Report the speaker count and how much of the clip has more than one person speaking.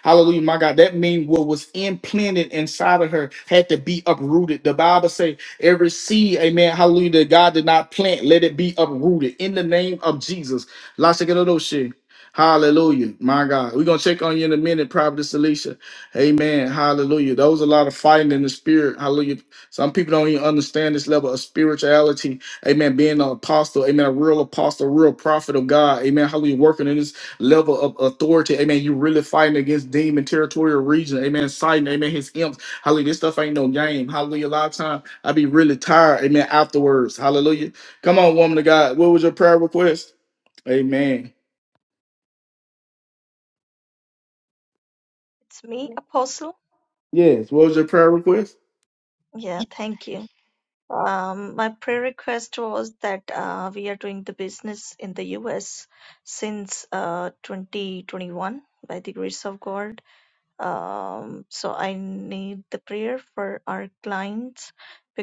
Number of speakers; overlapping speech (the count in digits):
2, no overlap